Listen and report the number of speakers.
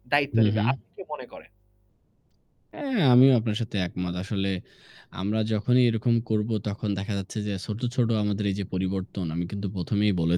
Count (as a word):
two